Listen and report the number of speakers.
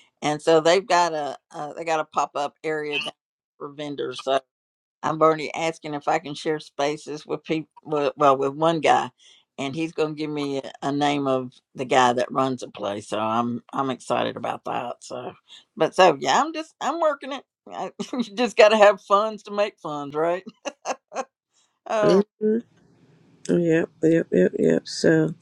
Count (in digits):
2